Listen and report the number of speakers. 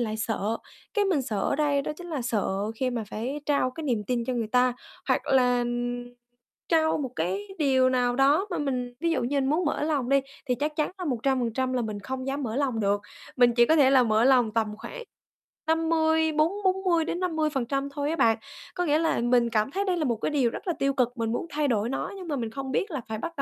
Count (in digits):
1